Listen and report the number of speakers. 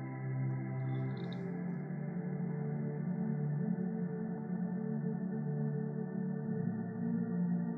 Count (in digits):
0